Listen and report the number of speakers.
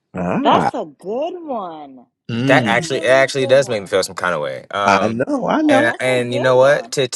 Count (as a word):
three